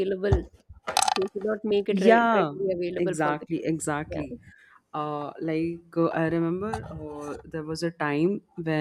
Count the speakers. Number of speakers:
2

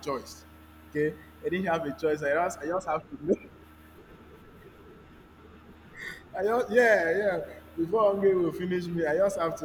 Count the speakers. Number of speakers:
1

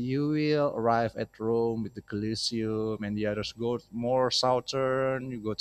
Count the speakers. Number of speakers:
1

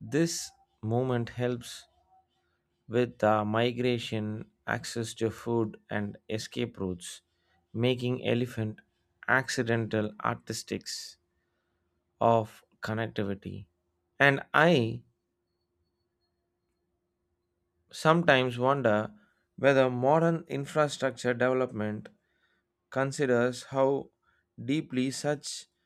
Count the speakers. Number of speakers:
1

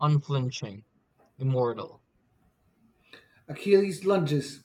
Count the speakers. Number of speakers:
2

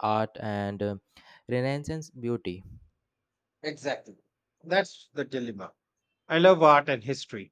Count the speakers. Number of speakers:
2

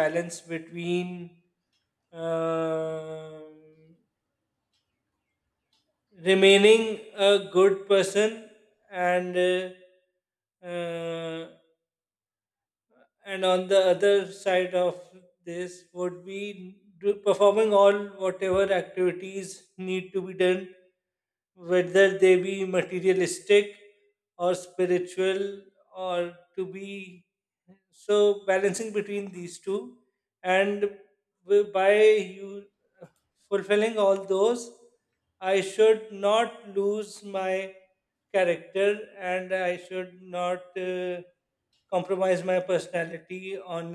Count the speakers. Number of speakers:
1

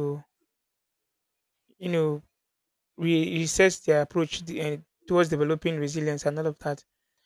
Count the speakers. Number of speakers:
1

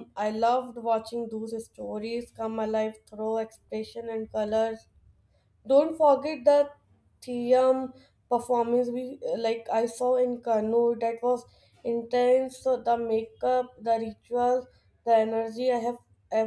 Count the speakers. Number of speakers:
1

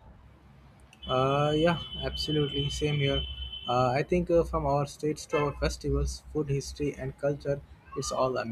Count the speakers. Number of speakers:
1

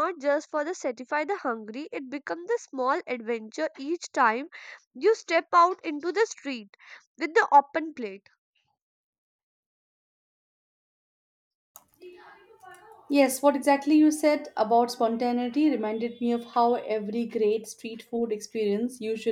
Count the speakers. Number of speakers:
2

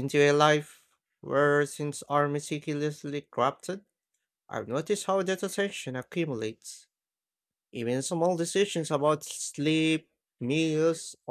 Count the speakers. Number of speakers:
1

